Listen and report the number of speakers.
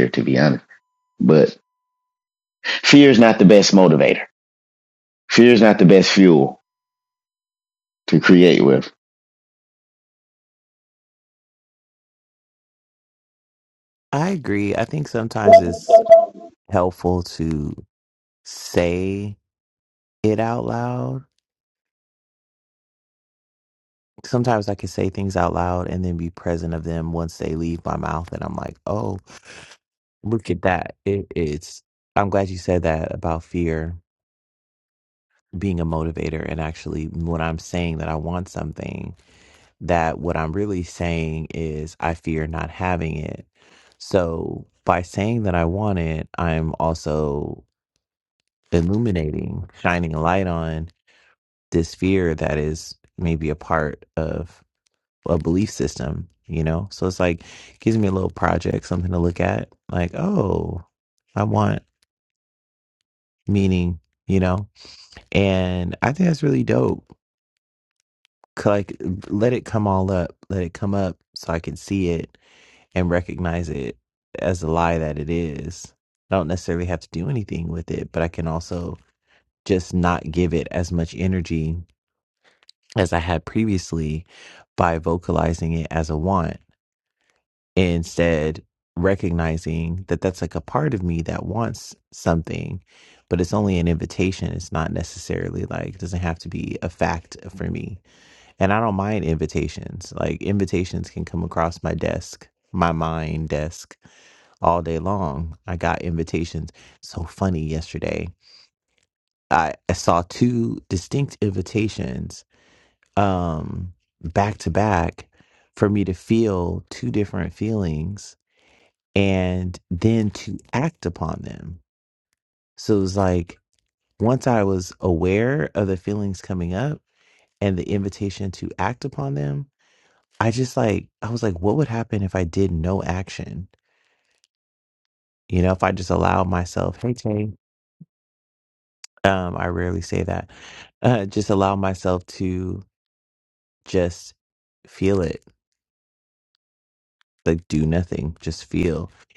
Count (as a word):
two